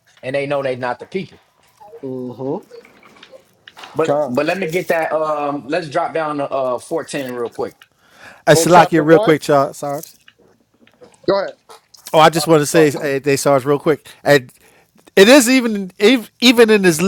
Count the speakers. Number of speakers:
3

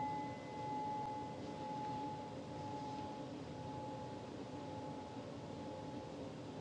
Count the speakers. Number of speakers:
0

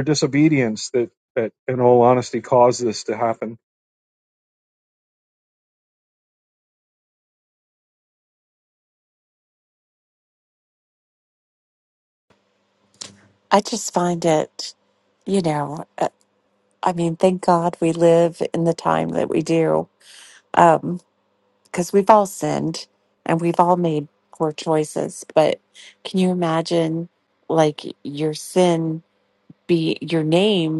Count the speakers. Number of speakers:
2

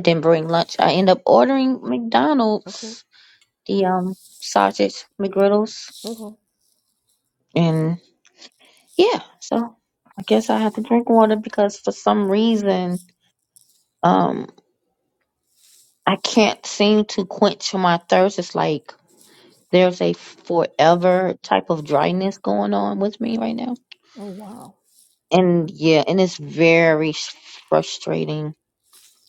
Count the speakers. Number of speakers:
2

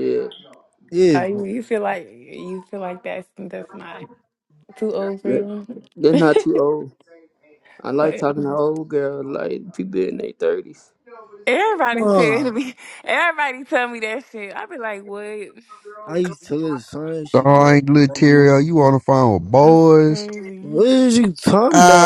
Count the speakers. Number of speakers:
4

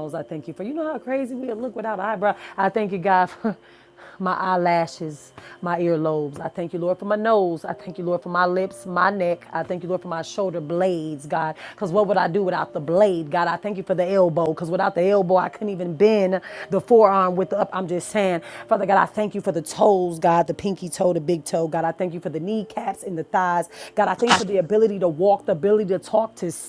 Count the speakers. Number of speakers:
1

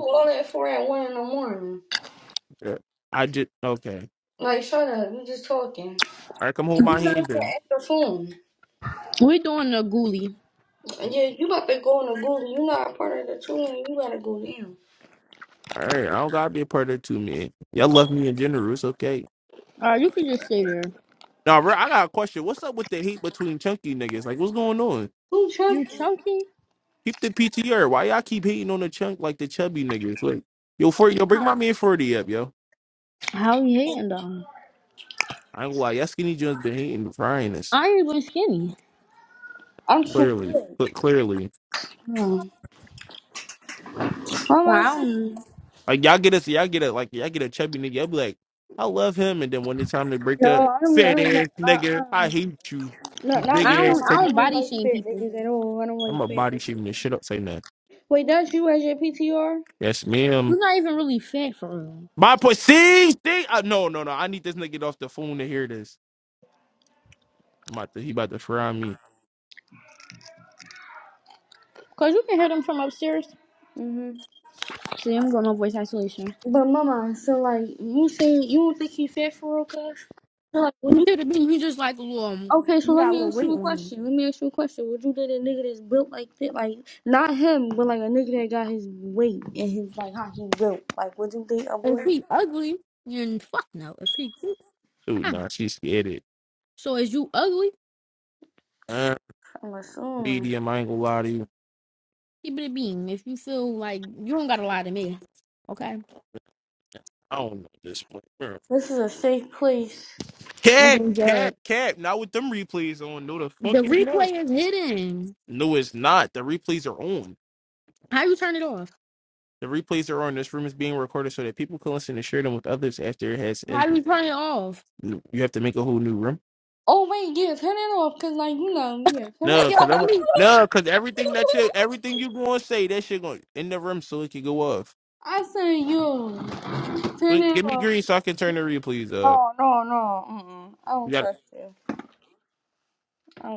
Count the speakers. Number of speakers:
3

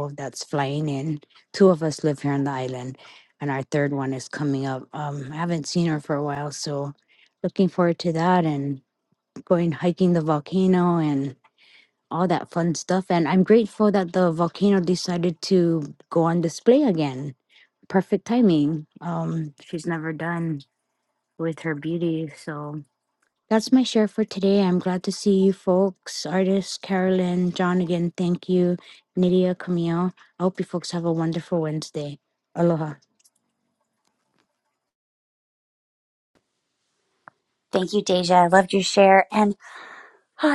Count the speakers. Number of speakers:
2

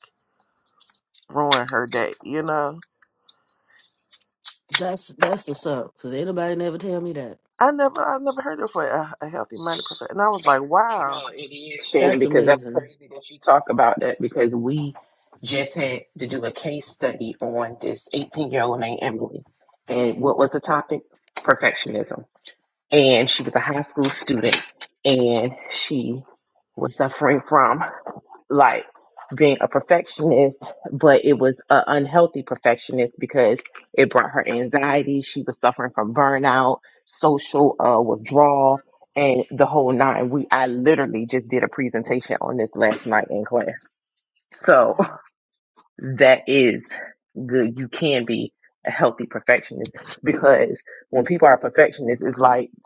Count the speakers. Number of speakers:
3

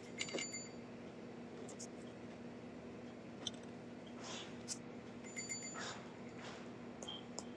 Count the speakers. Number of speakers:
0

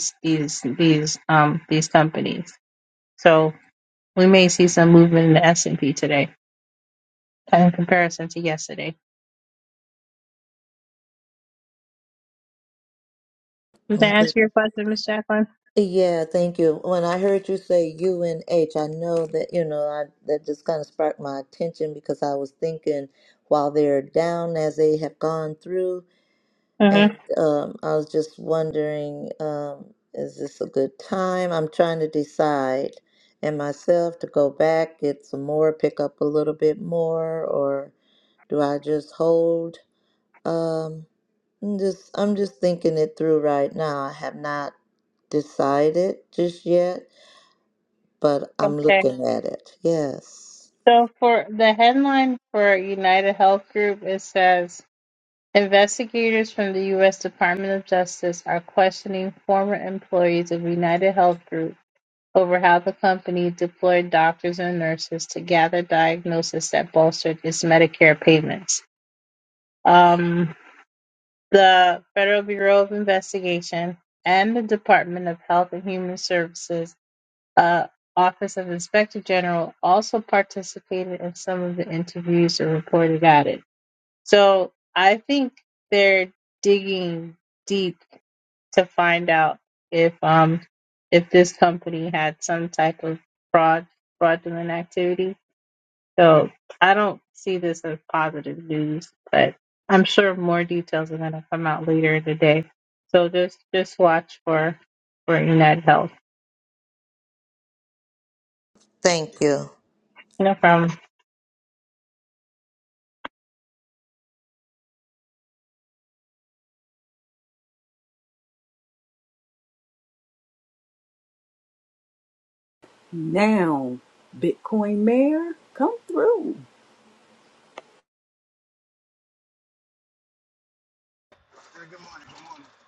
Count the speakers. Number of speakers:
4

